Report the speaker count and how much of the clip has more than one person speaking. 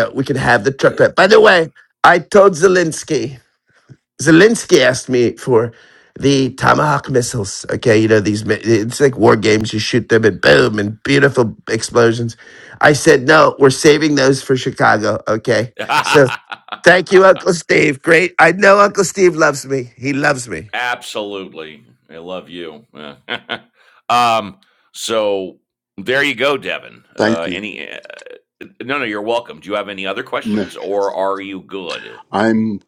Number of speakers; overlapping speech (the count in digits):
3, about 2%